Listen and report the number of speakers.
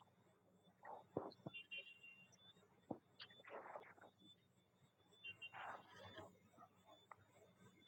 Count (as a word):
zero